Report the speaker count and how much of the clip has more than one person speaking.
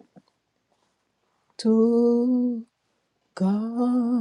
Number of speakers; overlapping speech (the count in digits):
1, no overlap